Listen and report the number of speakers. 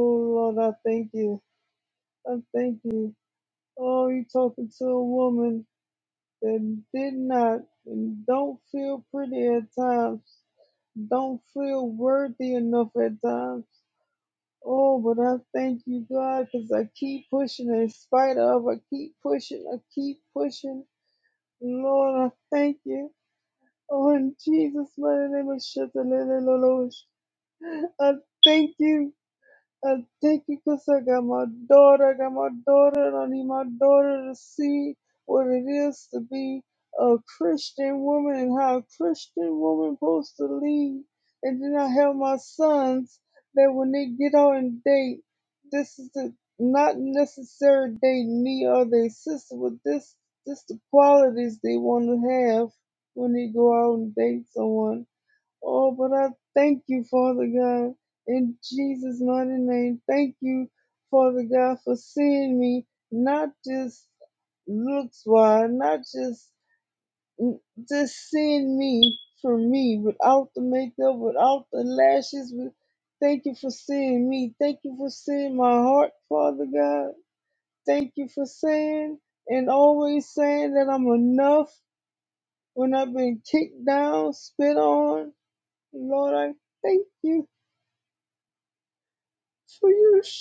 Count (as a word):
one